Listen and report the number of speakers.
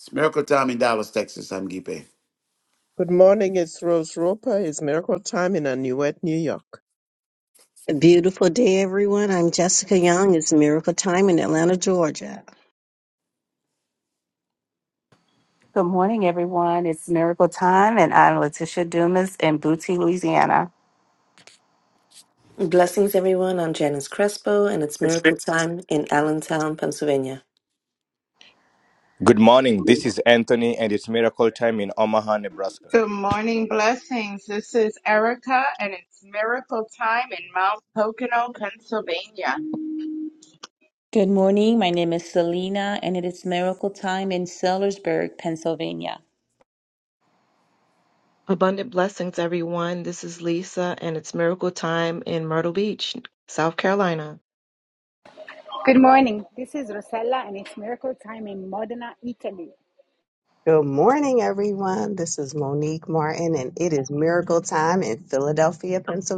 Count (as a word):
eleven